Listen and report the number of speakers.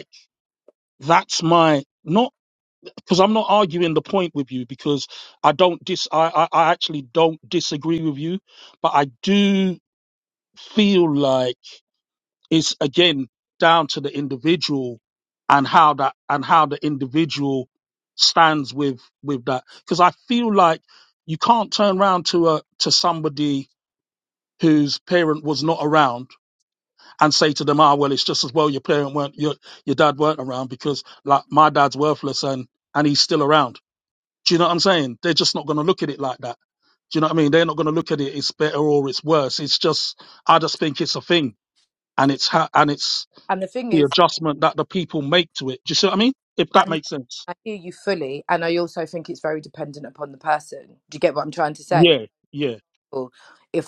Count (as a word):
two